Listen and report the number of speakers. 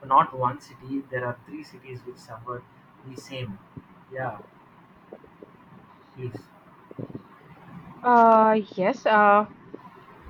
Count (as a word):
two